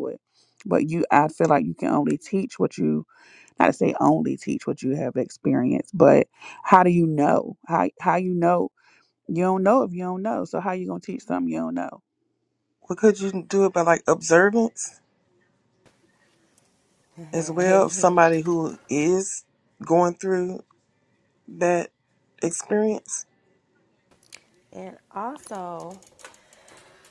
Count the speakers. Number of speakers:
3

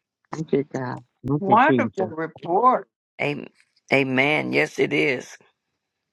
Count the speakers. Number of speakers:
3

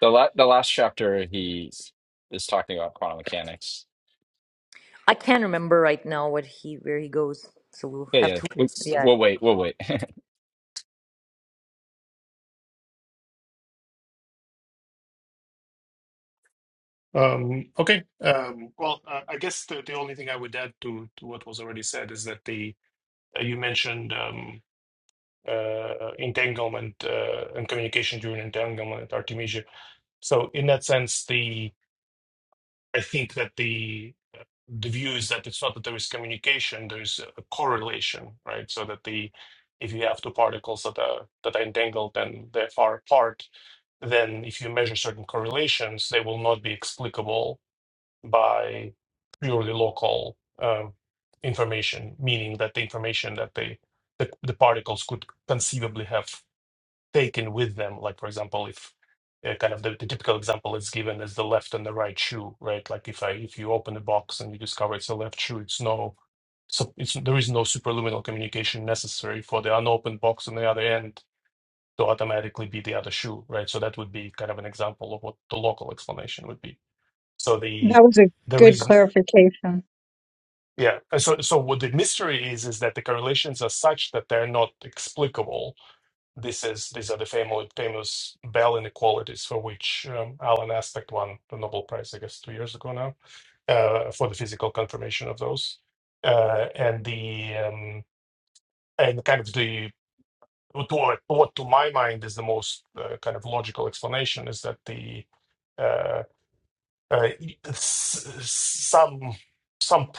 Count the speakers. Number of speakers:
4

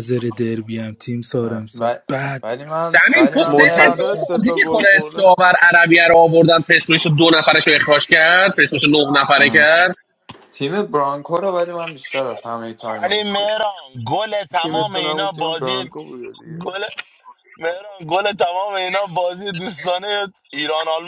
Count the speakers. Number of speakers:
5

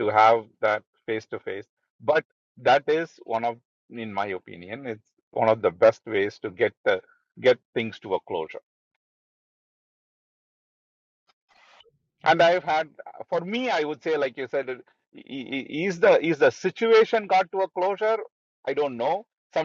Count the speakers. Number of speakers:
1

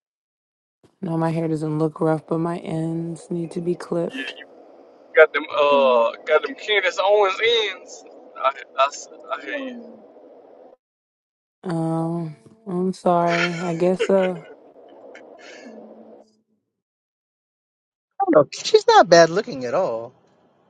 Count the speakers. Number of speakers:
3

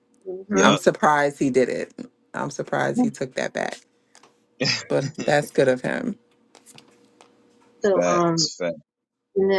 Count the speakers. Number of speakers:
3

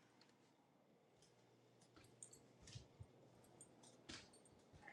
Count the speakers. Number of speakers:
0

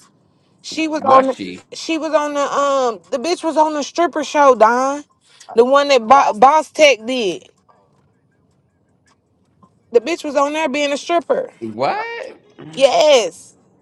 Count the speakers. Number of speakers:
2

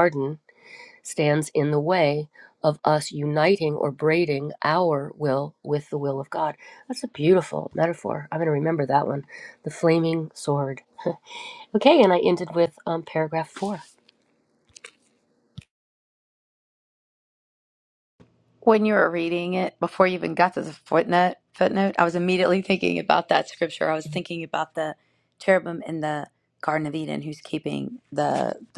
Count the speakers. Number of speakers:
2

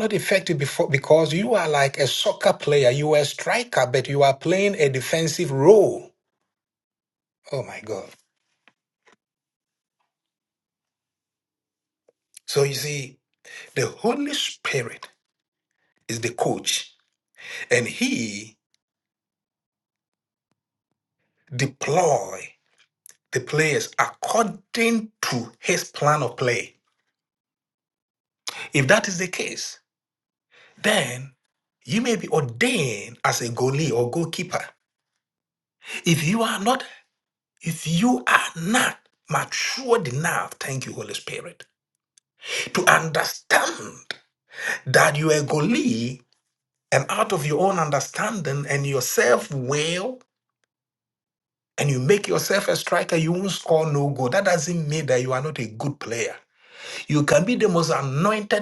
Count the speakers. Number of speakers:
1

